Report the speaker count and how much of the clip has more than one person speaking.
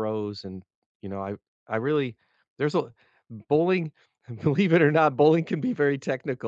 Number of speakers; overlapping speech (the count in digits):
1, no overlap